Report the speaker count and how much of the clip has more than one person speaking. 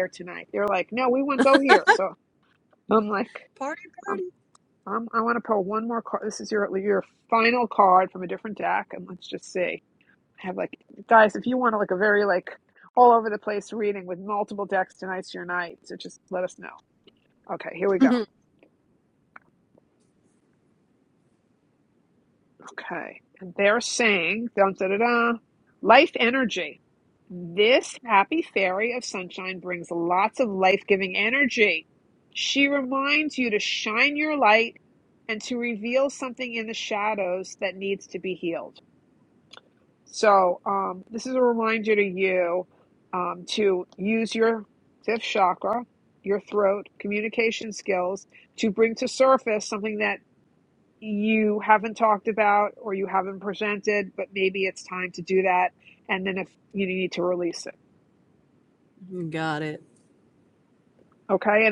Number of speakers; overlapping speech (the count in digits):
2, under 1%